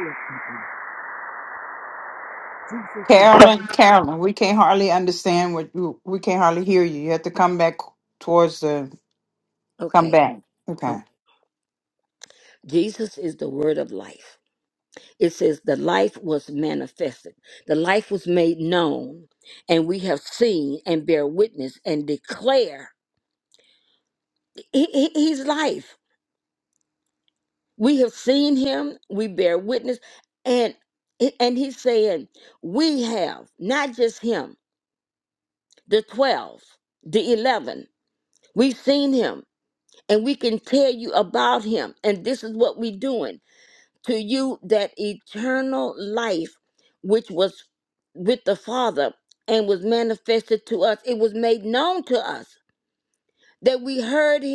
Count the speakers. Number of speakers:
2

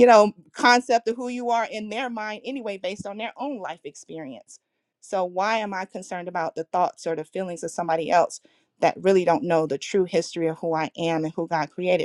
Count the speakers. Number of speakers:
1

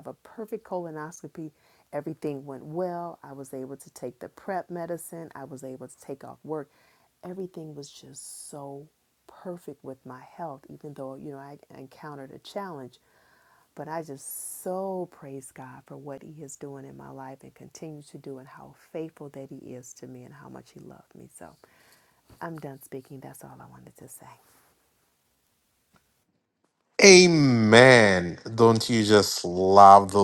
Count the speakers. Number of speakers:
2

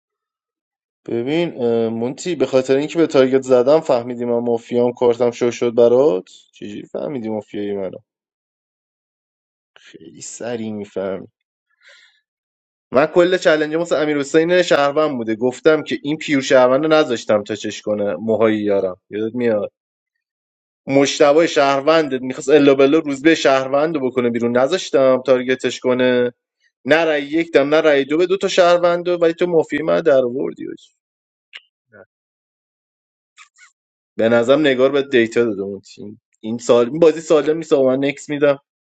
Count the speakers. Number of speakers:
1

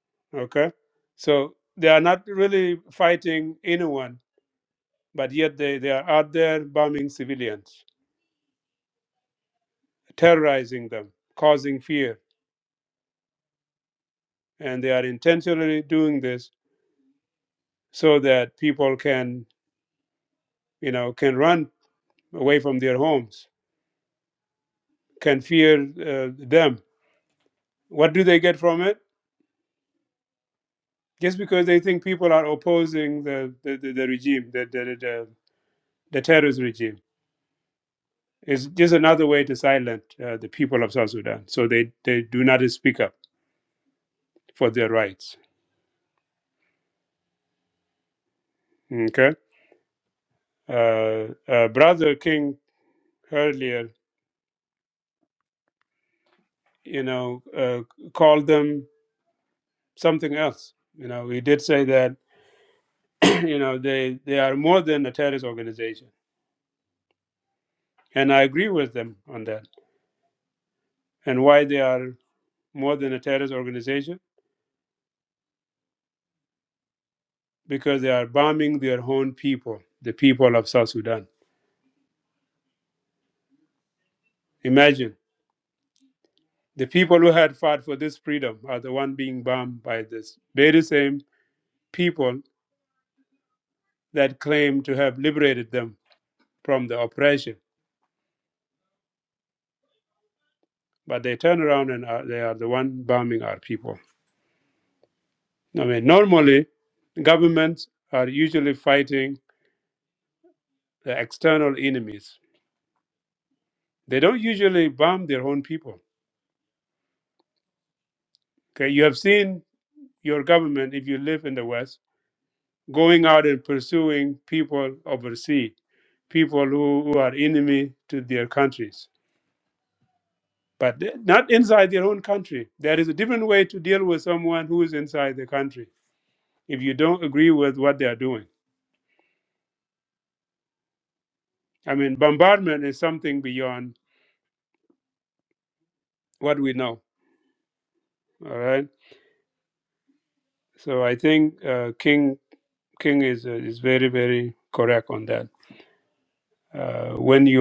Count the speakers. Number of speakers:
1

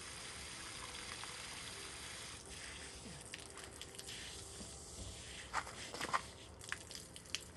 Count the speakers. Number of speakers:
0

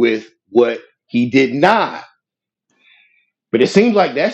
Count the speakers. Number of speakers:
1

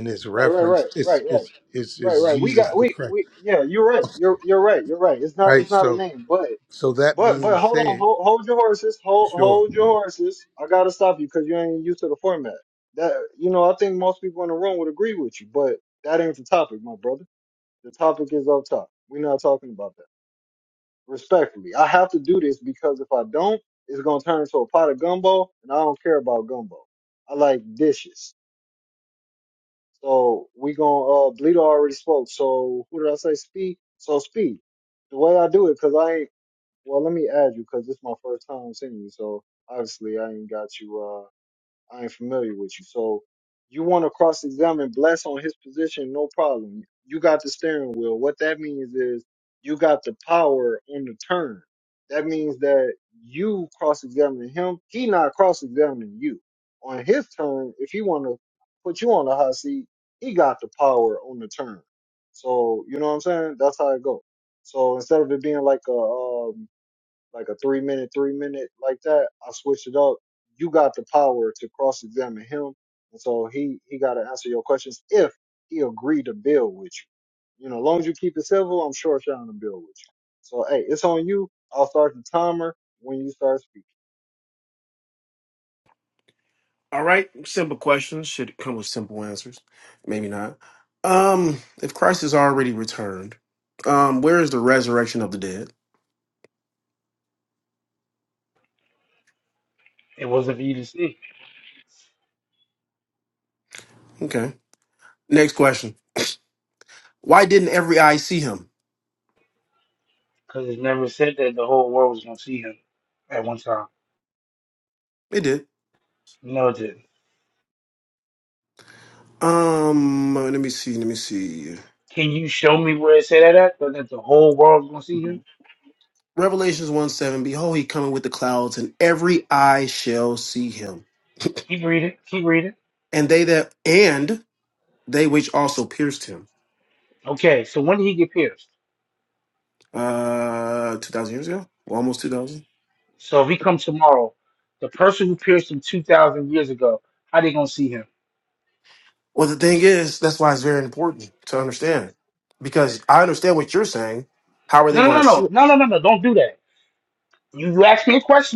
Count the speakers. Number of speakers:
4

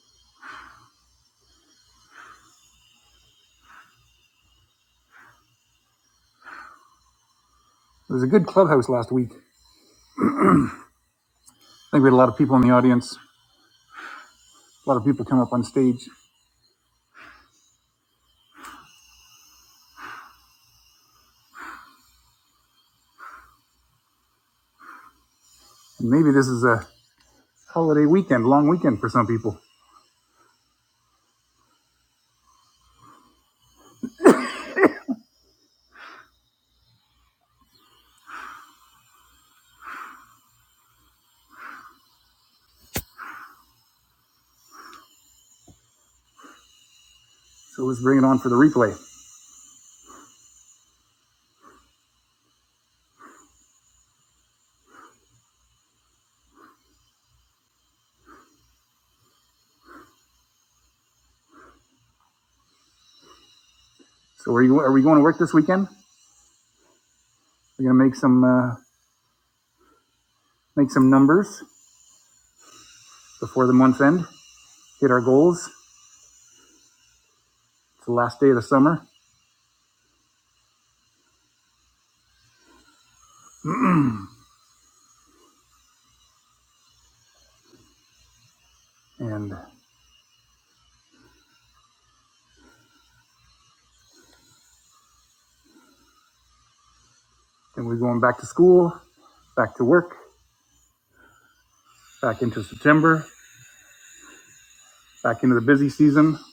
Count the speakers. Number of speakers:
1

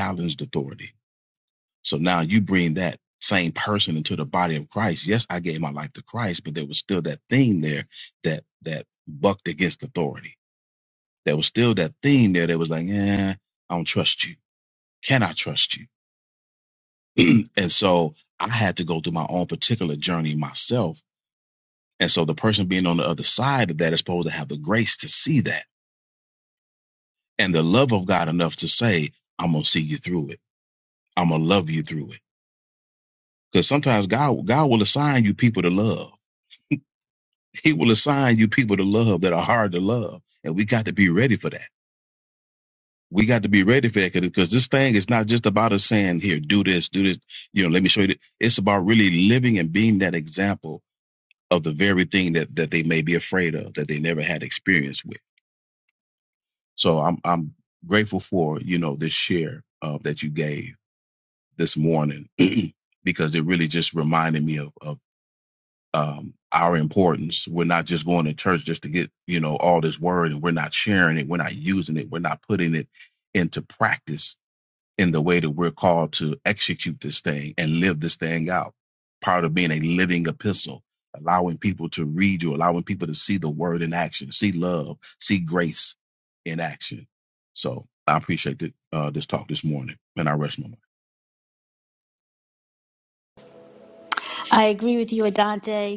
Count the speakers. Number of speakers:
2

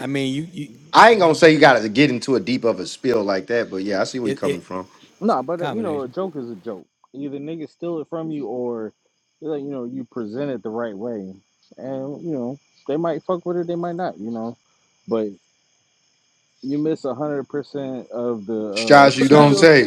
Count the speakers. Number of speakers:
3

